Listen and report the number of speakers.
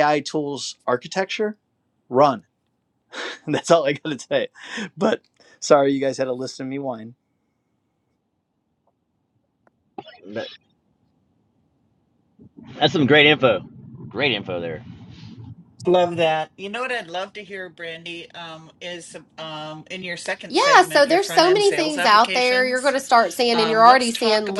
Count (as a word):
four